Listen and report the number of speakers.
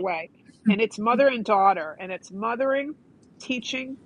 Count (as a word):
one